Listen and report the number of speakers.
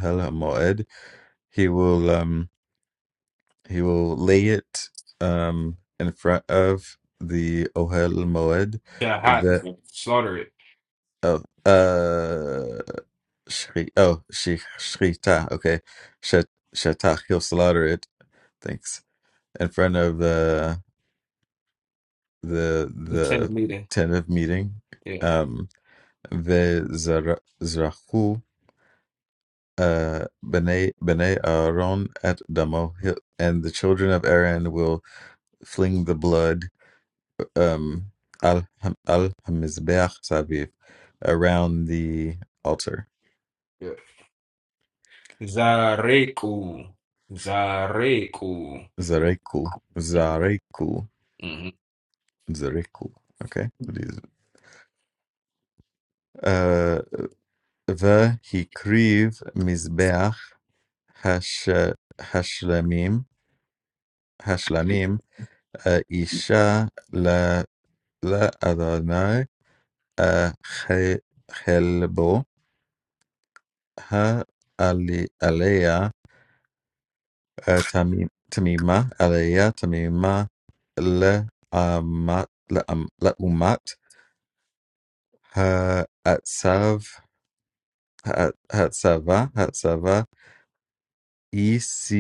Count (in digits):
2